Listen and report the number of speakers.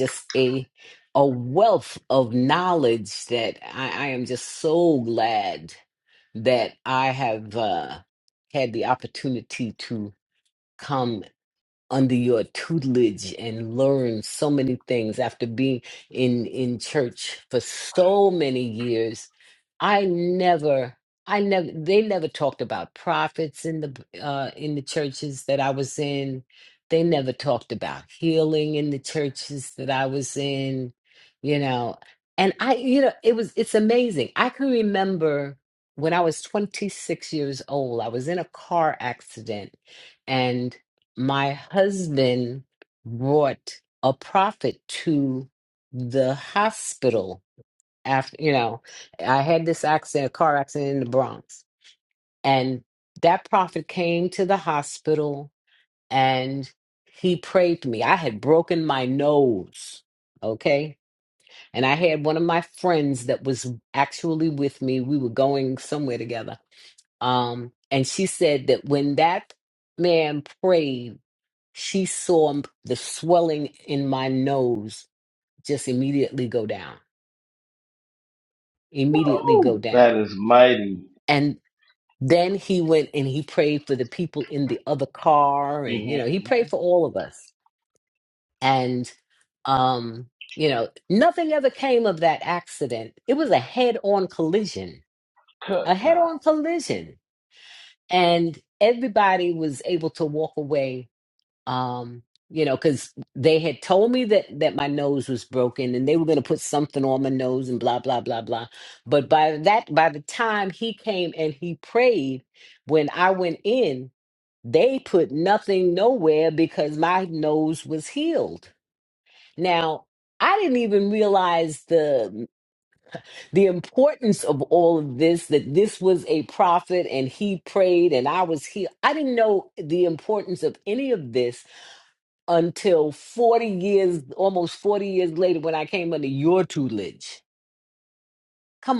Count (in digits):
2